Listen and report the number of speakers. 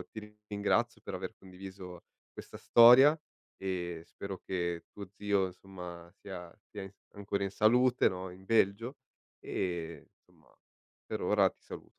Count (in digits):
1